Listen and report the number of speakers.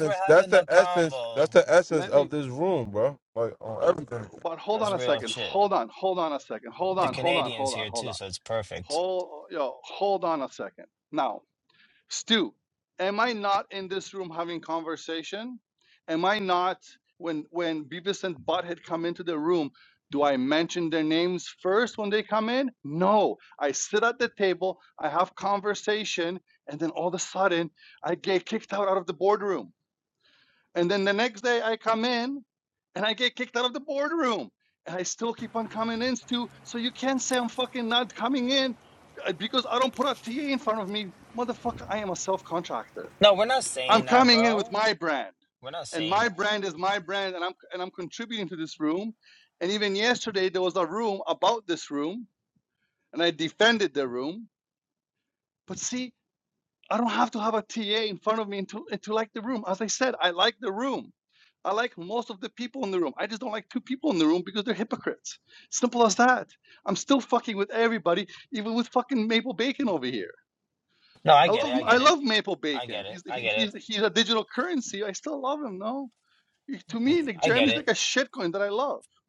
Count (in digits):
3